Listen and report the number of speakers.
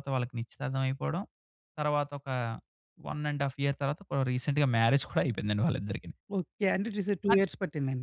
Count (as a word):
two